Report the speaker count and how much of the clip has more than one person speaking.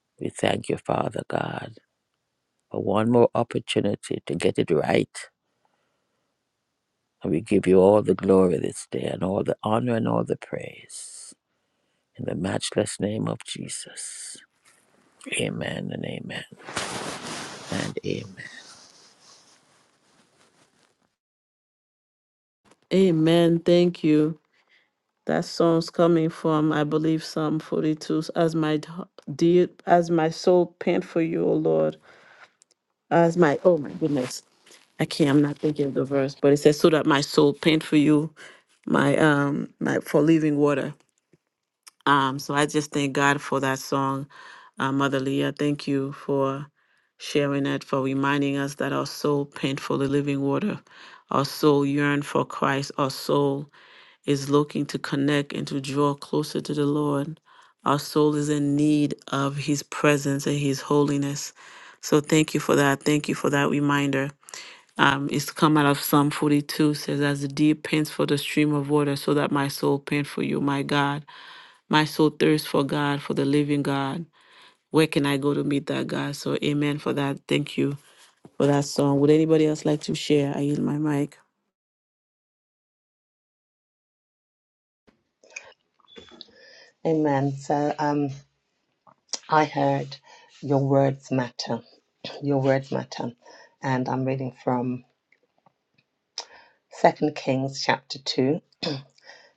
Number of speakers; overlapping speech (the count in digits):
3, no overlap